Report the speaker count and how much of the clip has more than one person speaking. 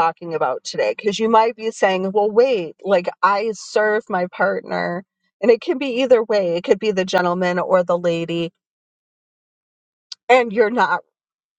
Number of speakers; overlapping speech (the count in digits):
1, no overlap